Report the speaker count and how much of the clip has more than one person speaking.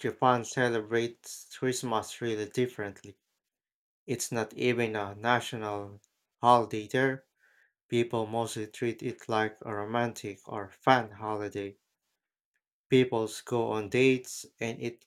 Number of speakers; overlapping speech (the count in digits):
1, no overlap